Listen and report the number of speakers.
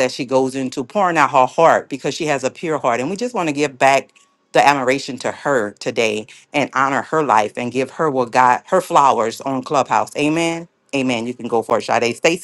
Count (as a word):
one